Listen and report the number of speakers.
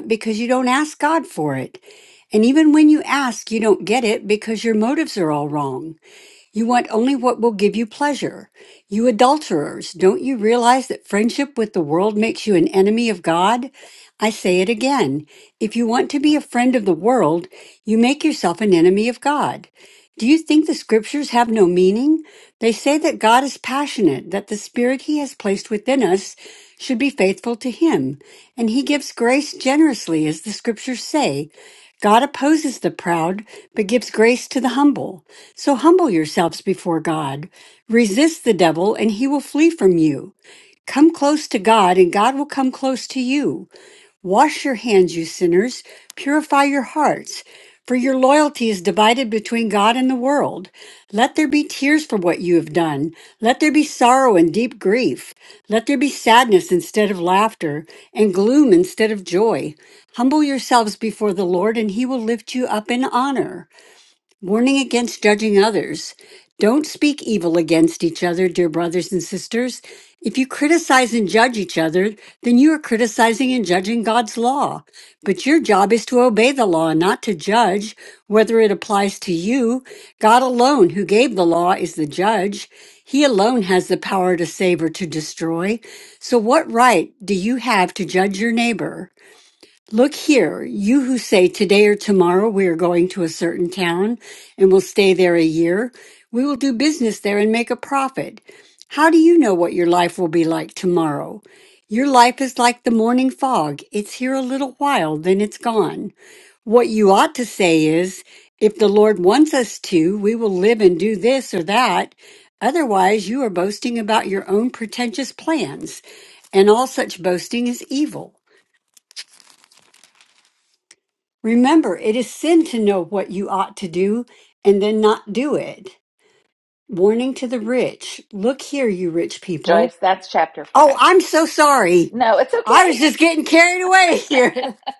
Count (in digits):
2